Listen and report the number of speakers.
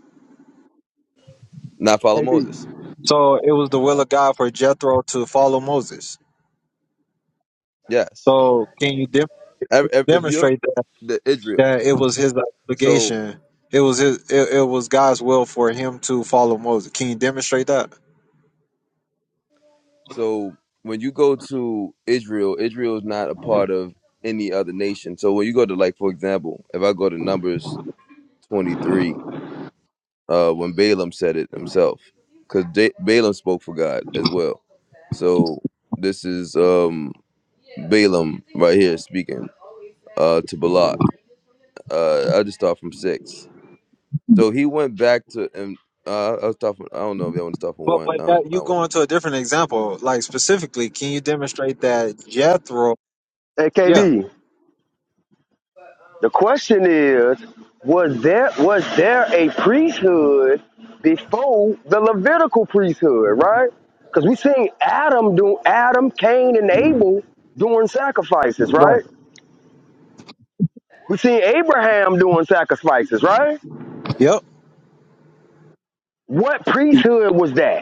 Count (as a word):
three